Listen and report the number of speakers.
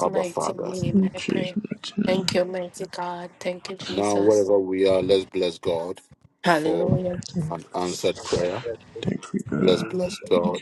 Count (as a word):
three